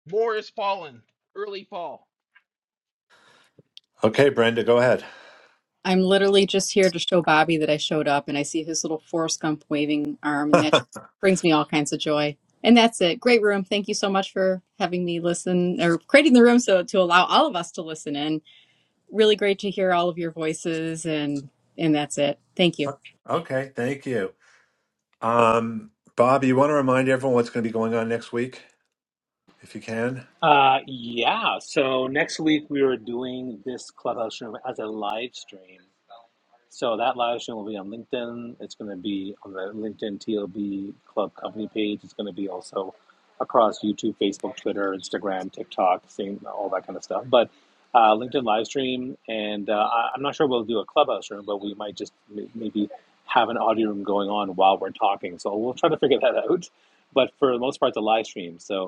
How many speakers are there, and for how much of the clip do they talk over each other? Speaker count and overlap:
four, no overlap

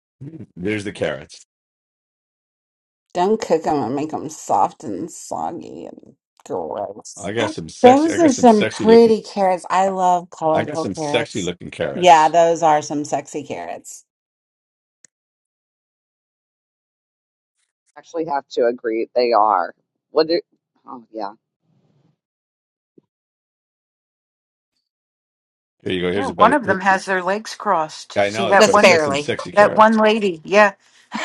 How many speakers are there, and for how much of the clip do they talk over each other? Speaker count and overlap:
four, about 14%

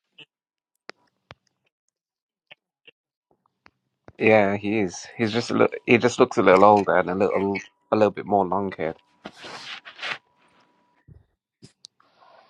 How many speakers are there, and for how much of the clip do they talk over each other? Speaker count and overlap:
one, no overlap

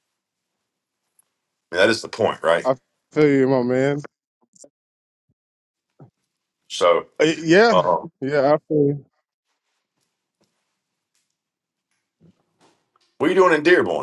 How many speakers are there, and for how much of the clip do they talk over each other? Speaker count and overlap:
two, about 1%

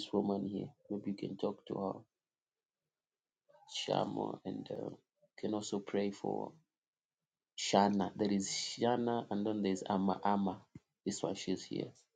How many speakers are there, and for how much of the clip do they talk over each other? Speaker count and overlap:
one, no overlap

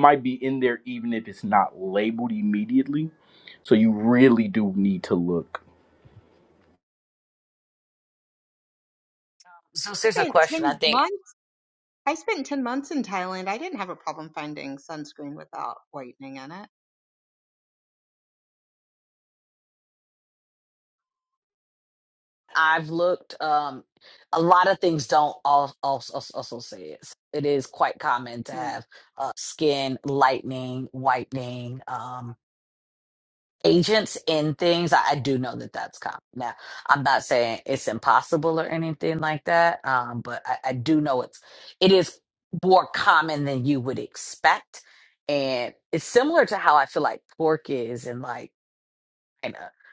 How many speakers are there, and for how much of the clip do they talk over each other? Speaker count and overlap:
three, about 3%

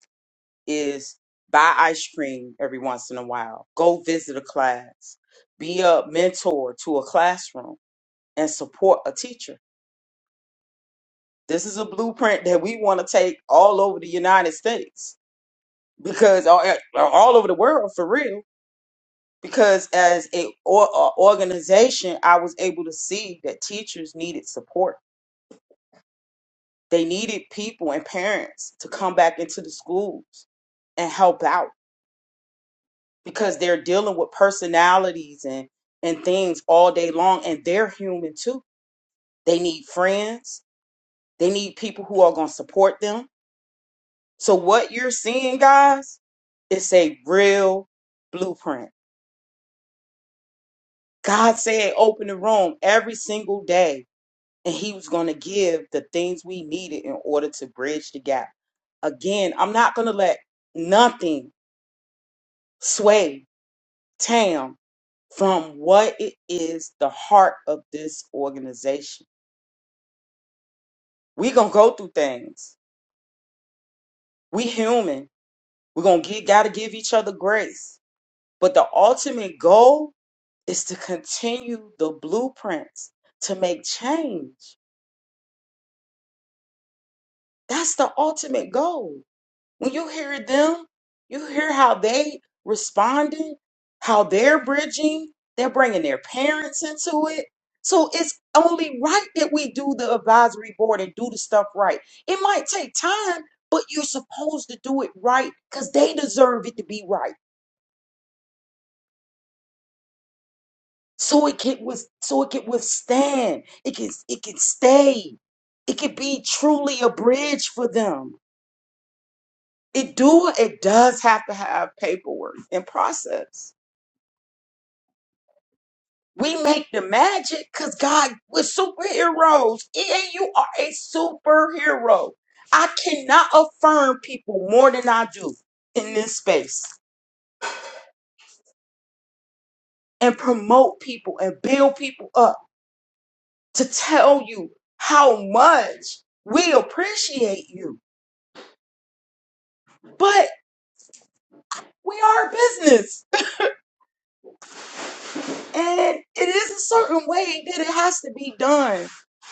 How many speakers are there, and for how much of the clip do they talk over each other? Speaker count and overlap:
one, no overlap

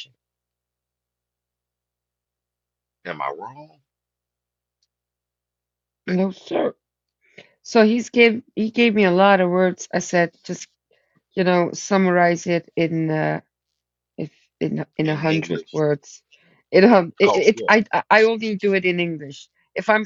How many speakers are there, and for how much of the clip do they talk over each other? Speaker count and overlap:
two, about 6%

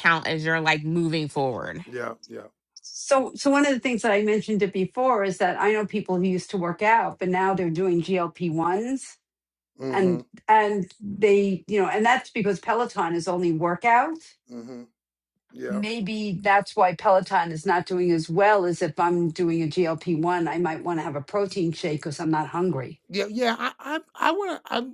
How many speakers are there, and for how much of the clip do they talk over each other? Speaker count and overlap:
three, about 2%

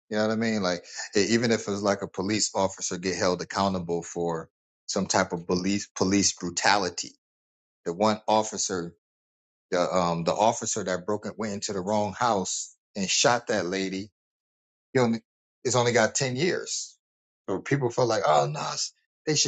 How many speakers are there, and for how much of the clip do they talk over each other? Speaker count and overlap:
one, no overlap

